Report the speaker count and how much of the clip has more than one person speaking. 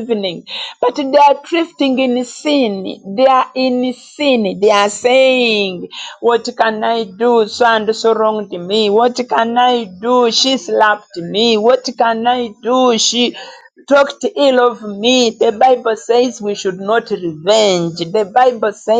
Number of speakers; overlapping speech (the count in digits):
1, no overlap